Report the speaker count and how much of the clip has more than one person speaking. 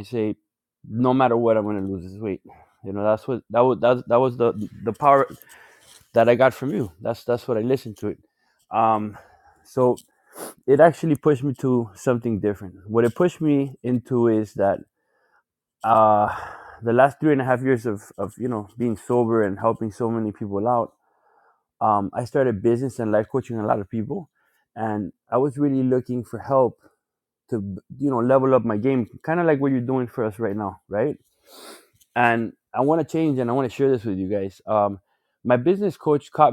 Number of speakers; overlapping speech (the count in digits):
1, no overlap